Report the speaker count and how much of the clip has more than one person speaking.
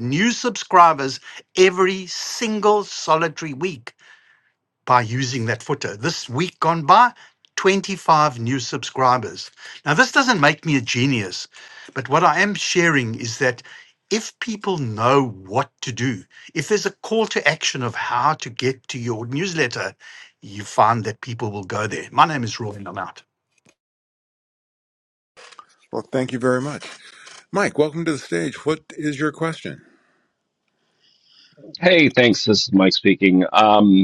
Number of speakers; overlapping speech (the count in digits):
3, no overlap